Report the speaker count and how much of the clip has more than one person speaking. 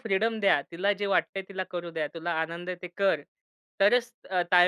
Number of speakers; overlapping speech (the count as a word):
one, no overlap